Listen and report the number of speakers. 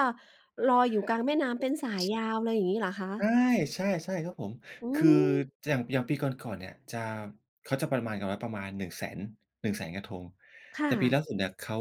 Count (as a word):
two